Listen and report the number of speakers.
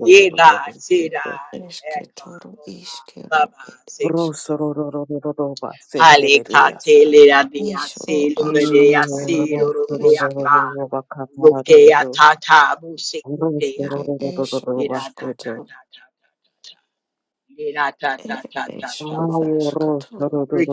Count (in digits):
3